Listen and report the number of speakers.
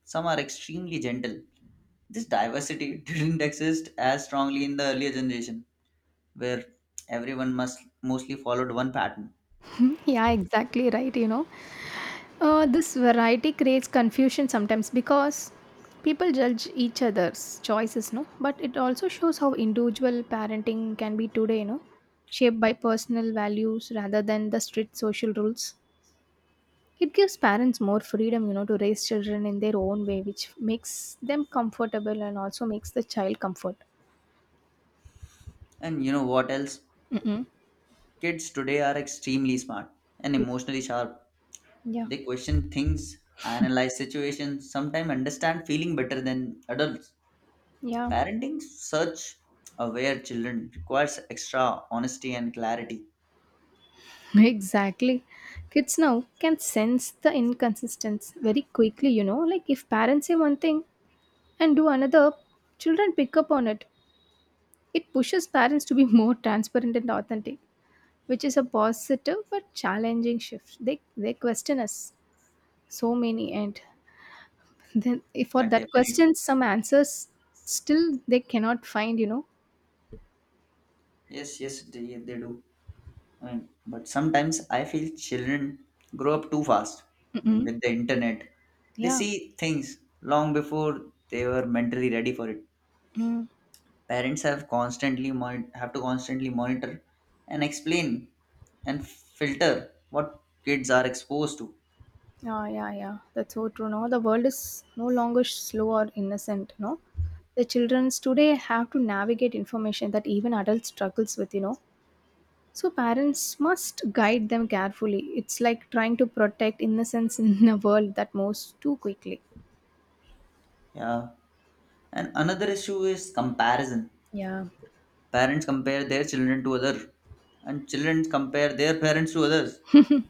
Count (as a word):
two